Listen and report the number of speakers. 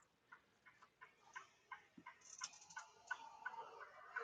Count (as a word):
zero